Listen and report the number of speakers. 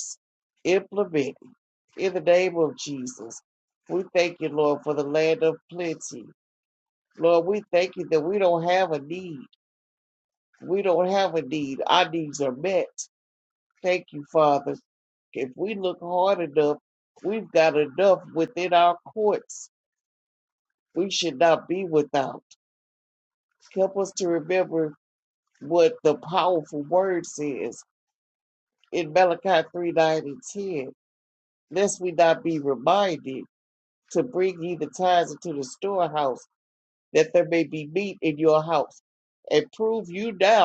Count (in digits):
1